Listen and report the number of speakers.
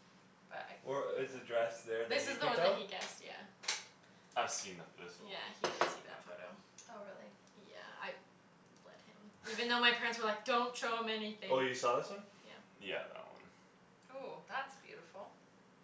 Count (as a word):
four